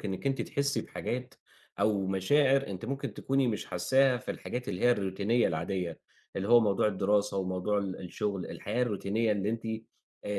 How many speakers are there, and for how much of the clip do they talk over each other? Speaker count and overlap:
one, no overlap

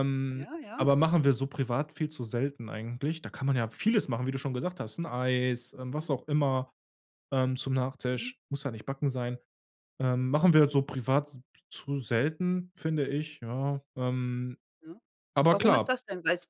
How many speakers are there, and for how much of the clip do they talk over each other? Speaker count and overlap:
two, about 6%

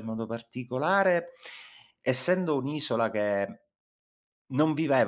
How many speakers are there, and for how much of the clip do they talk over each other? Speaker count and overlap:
one, no overlap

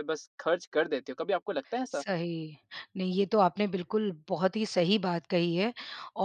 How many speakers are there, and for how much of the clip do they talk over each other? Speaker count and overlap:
two, under 1%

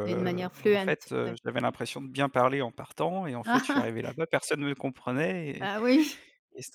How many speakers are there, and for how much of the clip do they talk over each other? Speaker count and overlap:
two, about 15%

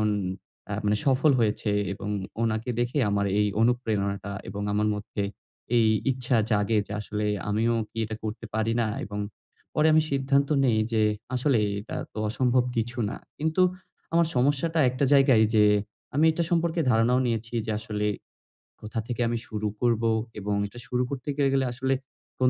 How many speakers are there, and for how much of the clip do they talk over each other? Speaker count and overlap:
one, no overlap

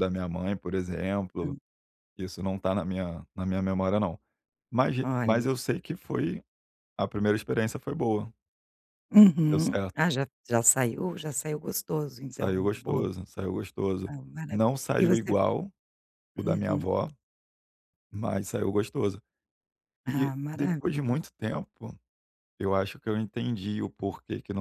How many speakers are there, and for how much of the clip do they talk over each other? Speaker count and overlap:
two, about 15%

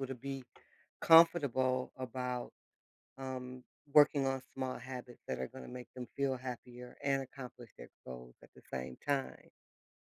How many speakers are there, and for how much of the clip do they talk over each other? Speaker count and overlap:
one, no overlap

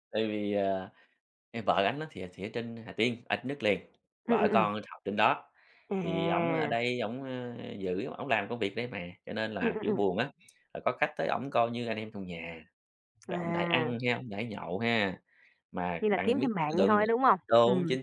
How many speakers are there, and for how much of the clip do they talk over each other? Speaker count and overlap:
two, about 21%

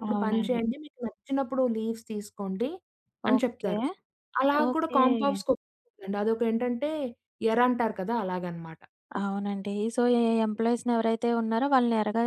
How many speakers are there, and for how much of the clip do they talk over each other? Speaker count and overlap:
two, about 13%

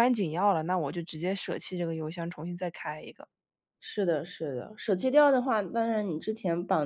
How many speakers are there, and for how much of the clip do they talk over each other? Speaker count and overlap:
two, no overlap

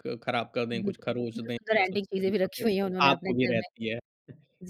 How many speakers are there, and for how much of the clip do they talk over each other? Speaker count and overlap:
two, about 47%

